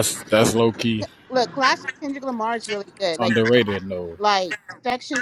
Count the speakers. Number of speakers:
2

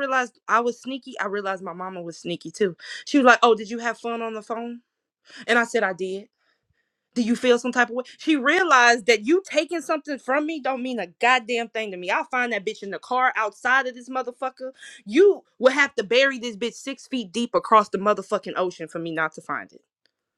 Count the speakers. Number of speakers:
1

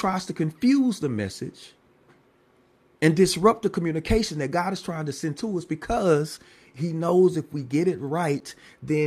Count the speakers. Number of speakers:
1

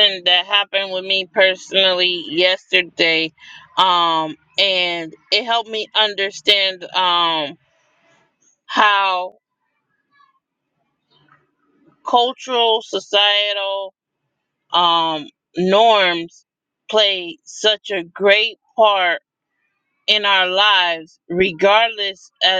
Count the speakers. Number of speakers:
1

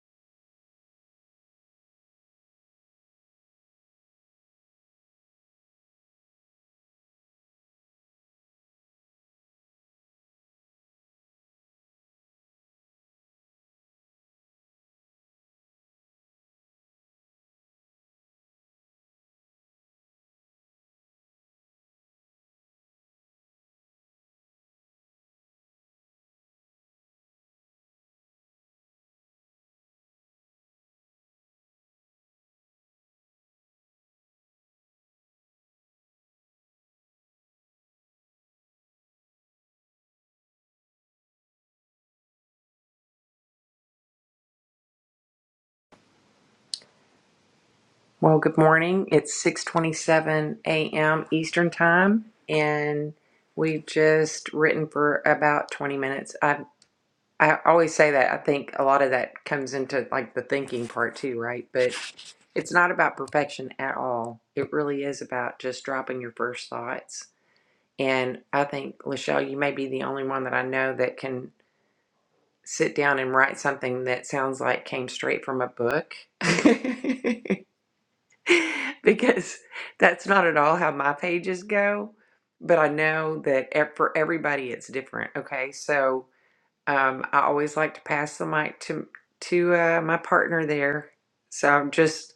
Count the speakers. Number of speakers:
1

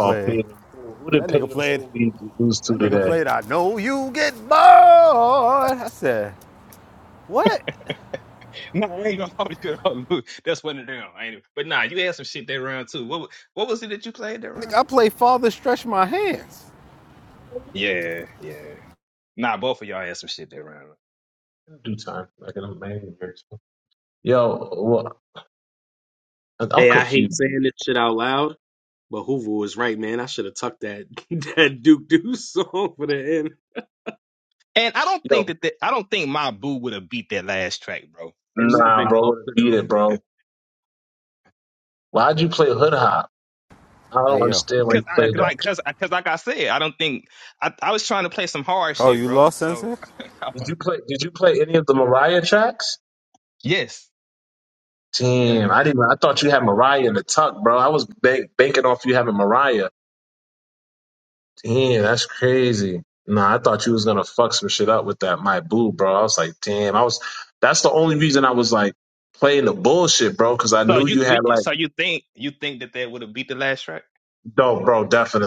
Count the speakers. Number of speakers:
4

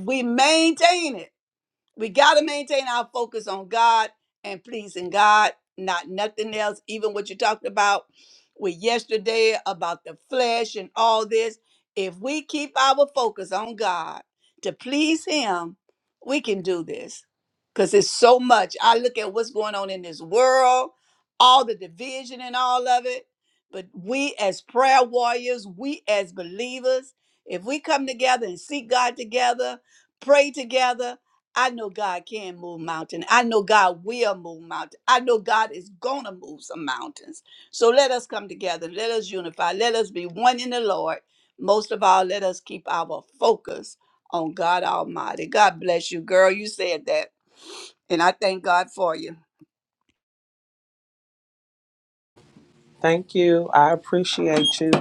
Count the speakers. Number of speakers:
2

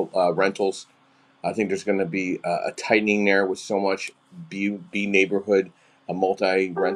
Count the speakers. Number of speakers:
1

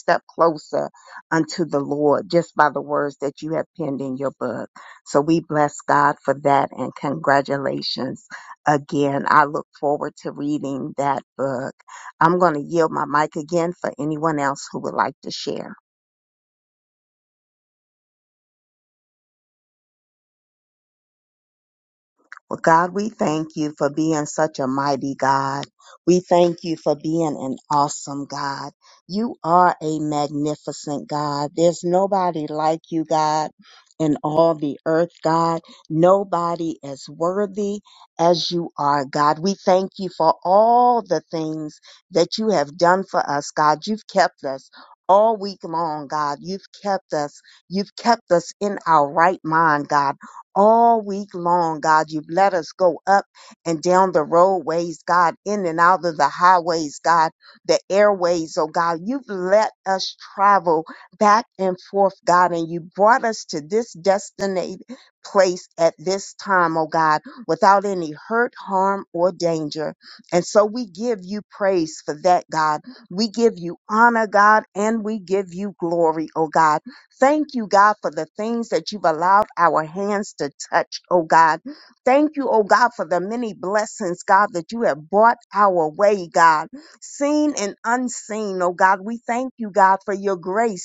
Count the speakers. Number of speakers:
1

